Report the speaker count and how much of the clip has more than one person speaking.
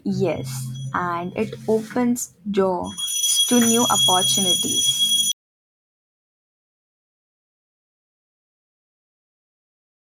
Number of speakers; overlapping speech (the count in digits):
1, no overlap